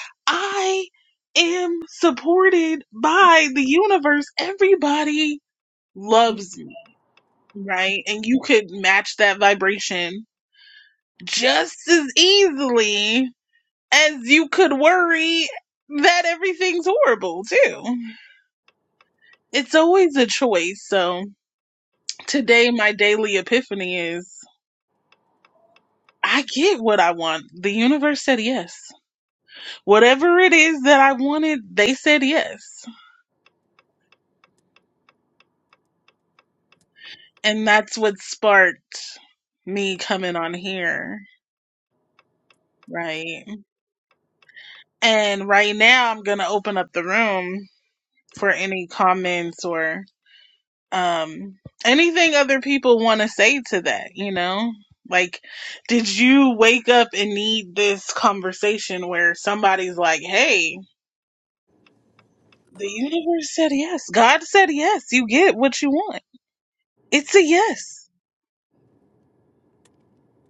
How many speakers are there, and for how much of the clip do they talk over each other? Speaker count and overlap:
1, no overlap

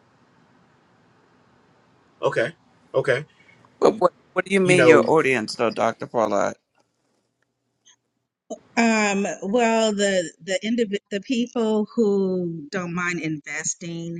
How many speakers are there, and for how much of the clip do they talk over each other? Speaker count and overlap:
3, about 3%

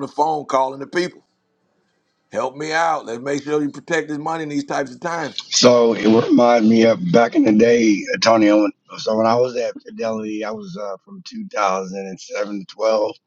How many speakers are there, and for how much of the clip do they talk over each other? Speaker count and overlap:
2, no overlap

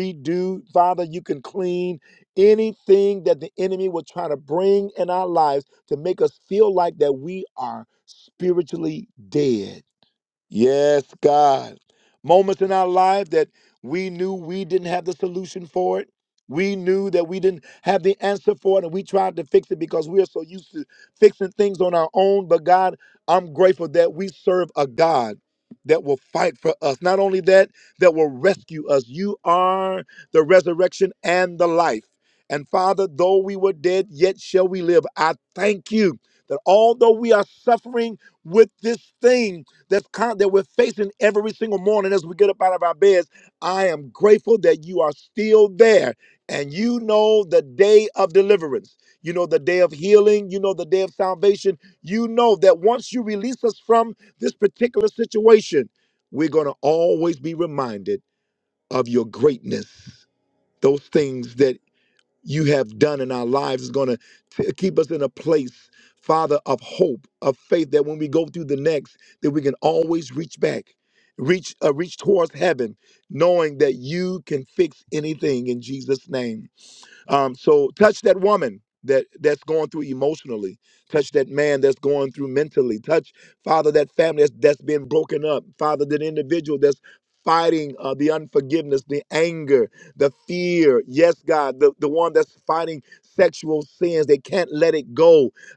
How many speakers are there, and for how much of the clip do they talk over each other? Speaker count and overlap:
1, no overlap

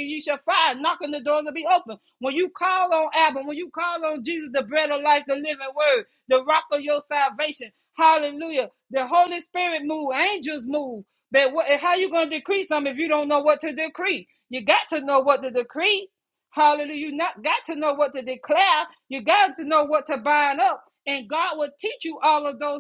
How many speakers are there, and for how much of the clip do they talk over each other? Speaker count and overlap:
1, no overlap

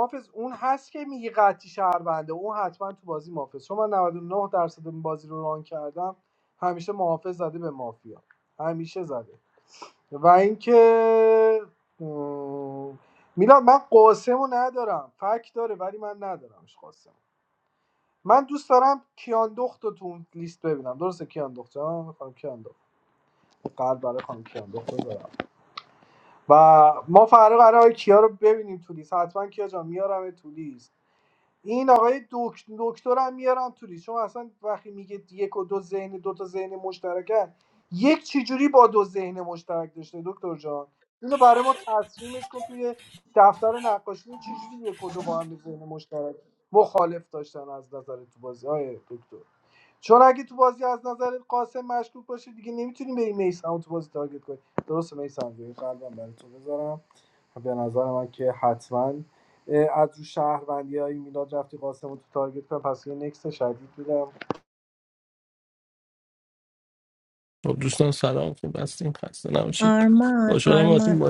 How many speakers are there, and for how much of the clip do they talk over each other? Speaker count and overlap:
3, about 1%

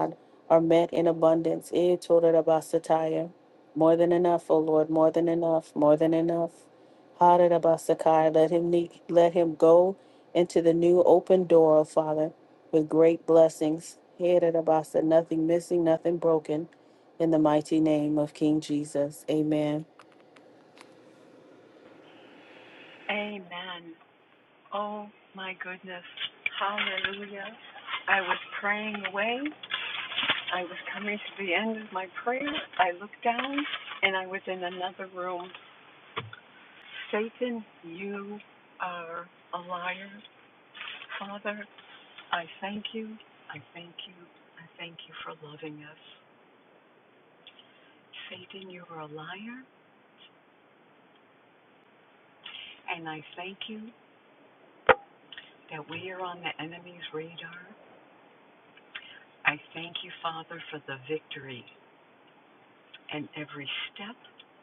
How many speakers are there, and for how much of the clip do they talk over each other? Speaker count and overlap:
2, no overlap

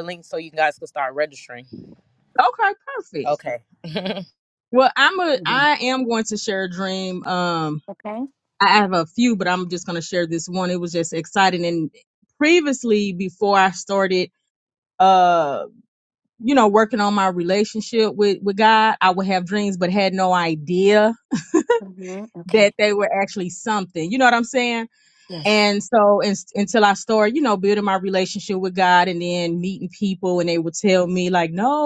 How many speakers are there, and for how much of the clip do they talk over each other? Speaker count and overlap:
3, about 2%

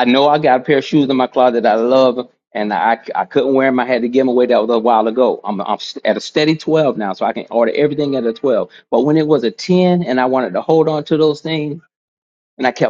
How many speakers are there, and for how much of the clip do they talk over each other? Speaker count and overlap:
1, no overlap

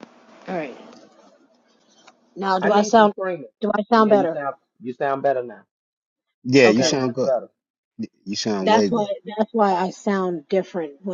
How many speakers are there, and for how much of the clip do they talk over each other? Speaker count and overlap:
3, about 18%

